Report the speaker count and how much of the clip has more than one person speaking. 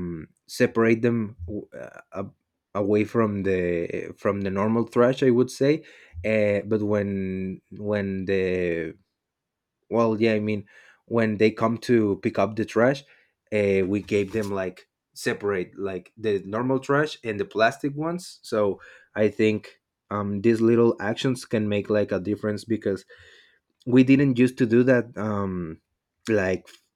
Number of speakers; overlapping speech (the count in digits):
1, no overlap